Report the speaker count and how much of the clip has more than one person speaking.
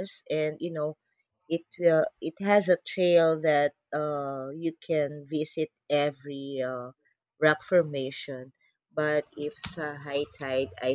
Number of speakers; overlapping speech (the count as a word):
one, no overlap